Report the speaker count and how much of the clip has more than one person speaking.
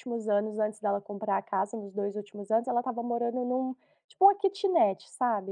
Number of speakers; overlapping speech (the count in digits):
1, no overlap